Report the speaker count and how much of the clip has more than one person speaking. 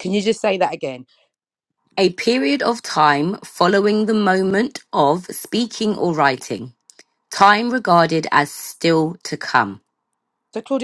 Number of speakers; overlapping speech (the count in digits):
2, no overlap